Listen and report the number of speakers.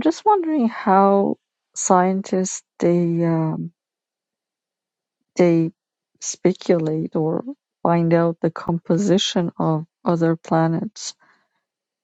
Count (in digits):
1